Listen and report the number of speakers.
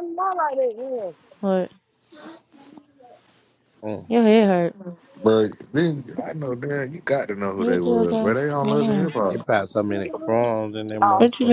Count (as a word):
four